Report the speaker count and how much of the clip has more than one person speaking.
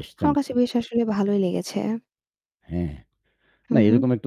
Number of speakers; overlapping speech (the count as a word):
two, about 16%